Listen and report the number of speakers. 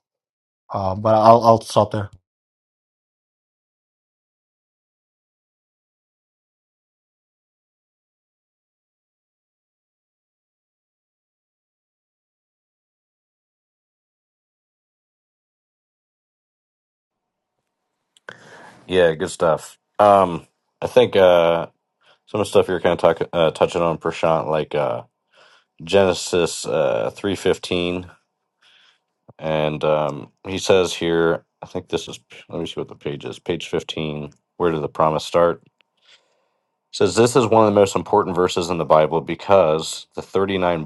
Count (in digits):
2